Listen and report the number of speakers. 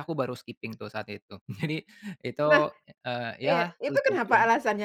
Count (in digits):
2